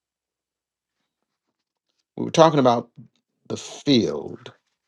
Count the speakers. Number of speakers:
1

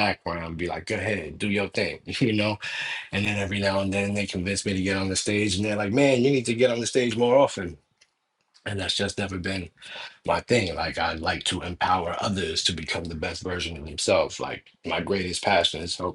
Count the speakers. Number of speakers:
1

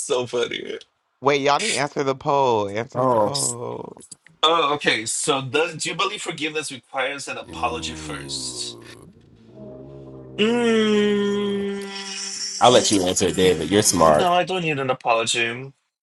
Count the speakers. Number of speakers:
3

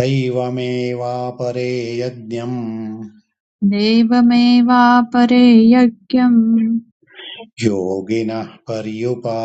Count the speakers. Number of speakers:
2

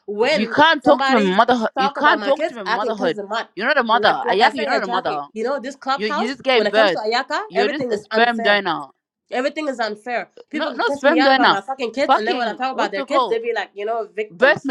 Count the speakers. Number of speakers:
2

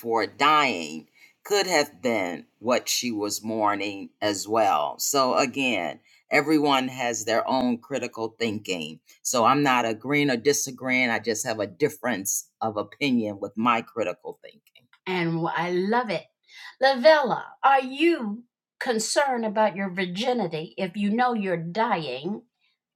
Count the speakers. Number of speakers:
2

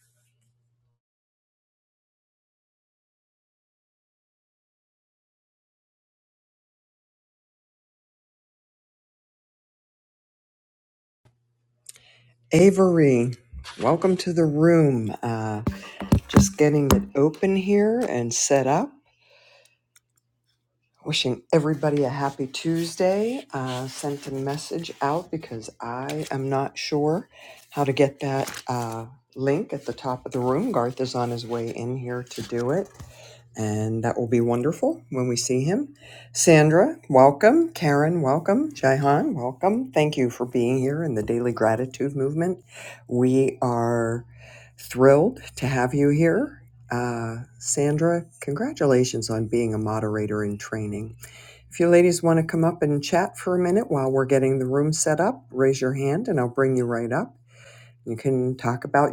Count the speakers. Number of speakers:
1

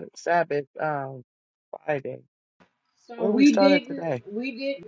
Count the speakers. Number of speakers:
2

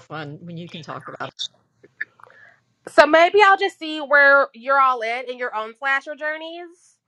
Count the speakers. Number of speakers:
2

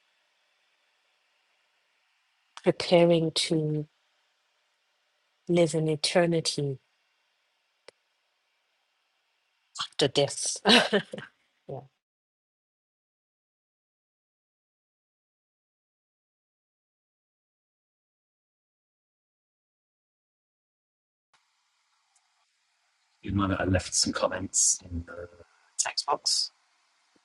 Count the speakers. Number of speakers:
2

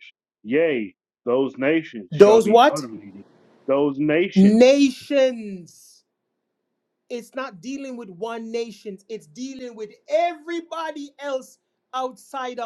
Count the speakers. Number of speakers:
2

